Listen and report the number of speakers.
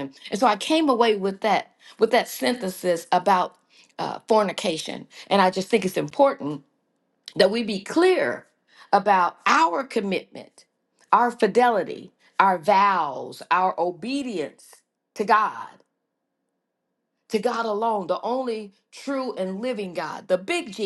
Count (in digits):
1